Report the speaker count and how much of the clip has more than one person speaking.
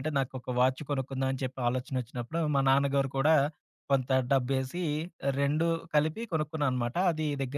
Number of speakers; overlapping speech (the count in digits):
1, no overlap